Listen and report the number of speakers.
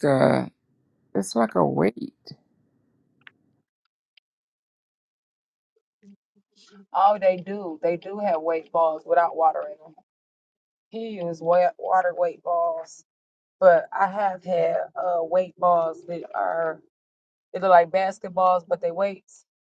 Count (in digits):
2